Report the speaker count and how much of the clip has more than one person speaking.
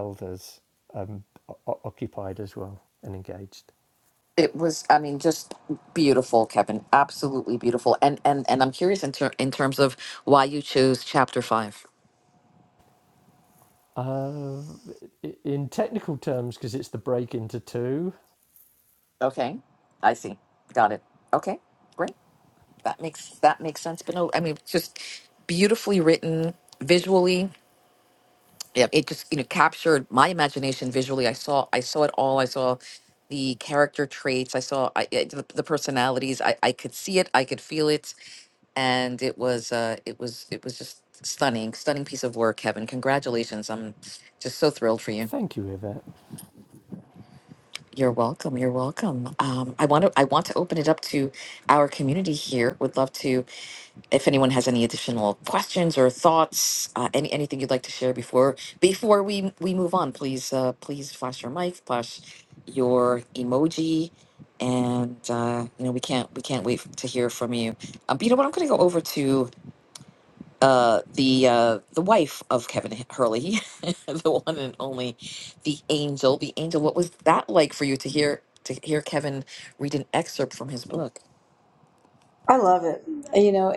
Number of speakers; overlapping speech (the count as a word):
three, under 1%